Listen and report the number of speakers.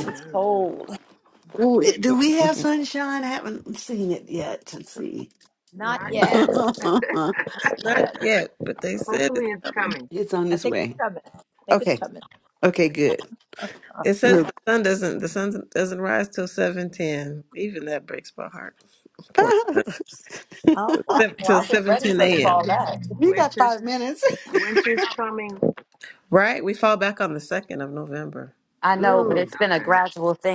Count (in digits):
5